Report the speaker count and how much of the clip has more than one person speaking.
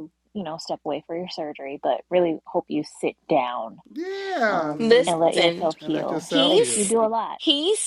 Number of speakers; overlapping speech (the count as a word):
three, about 29%